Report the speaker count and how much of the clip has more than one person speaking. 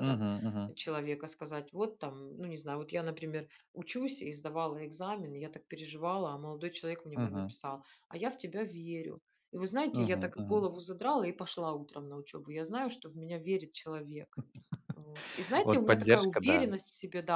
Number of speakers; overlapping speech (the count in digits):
2, about 13%